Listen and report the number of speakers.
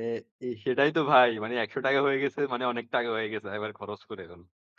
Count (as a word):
one